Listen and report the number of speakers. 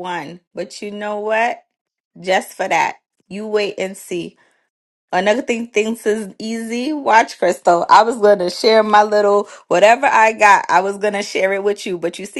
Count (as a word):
one